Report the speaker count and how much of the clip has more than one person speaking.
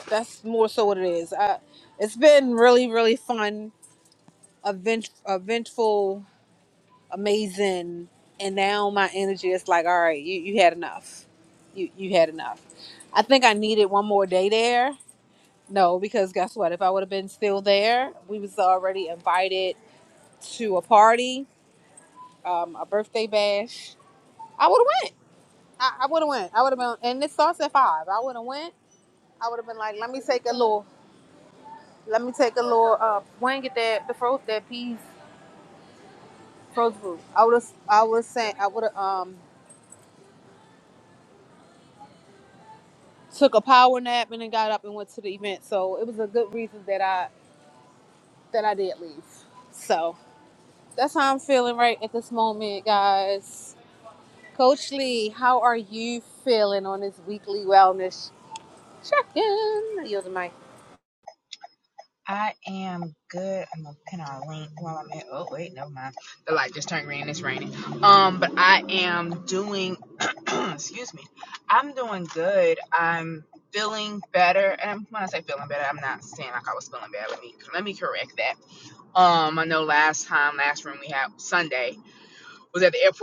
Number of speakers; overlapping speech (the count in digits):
2, no overlap